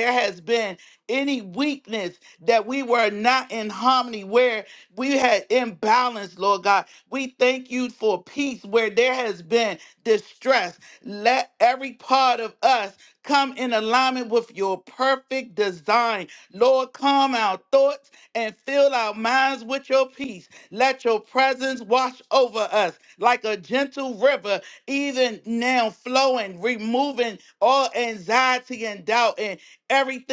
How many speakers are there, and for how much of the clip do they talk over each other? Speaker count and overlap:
one, no overlap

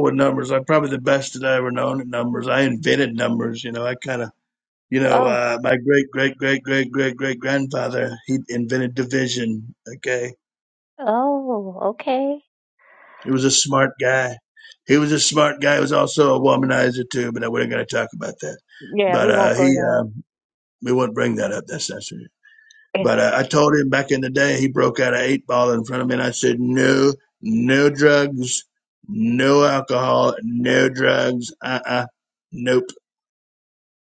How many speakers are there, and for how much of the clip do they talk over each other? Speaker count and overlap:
two, about 4%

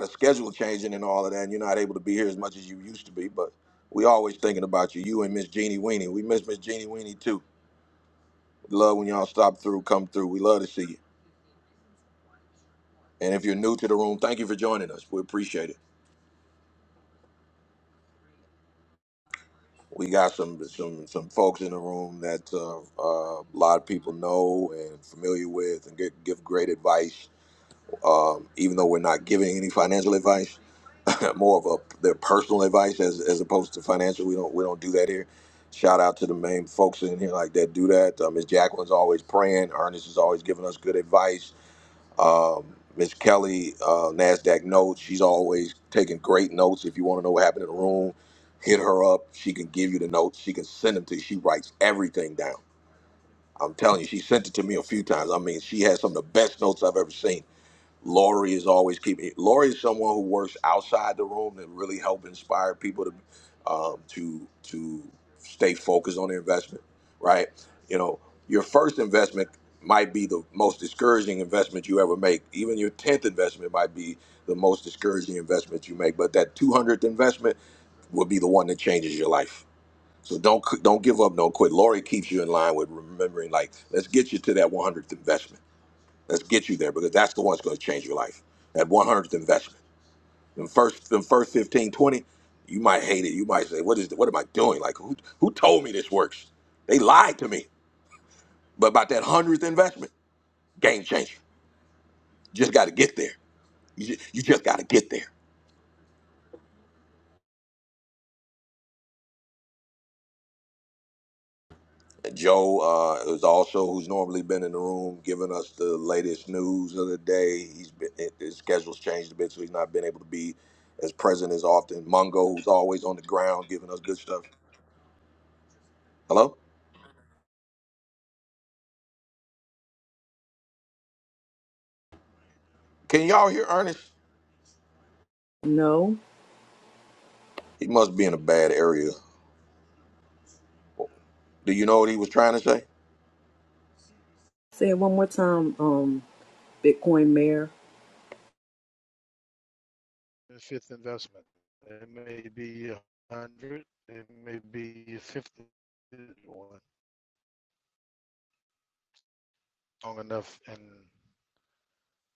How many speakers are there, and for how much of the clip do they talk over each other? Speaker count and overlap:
three, no overlap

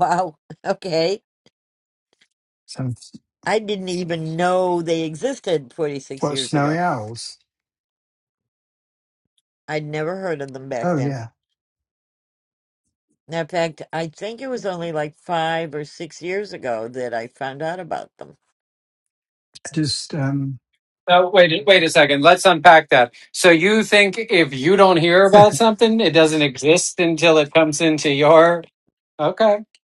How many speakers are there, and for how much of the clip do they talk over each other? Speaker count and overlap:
three, about 4%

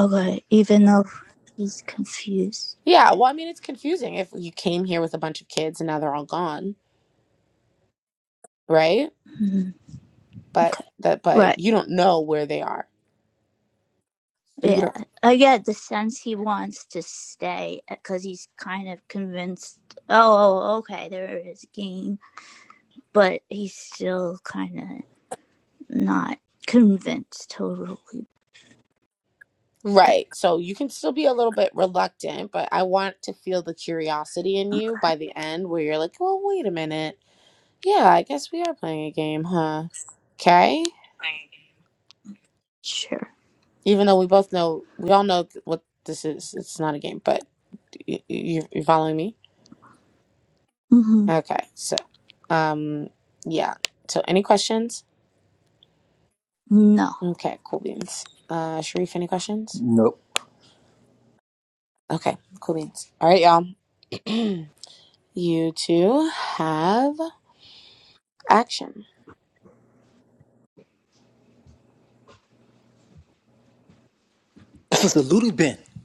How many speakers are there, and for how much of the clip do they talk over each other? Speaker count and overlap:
three, about 1%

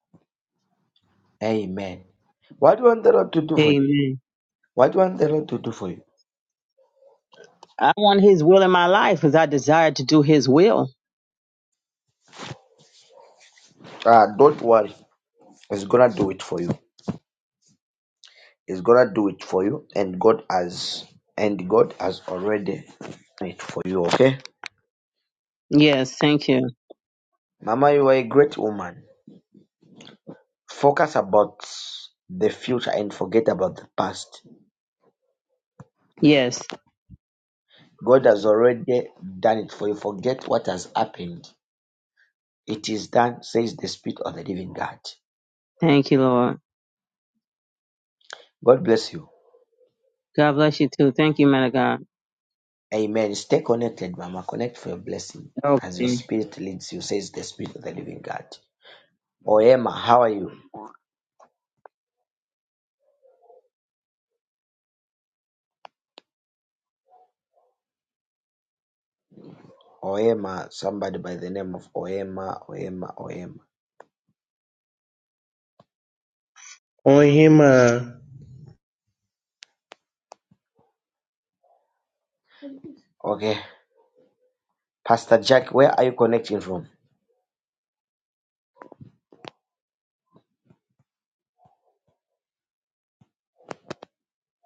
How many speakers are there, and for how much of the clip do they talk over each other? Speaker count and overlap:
three, about 1%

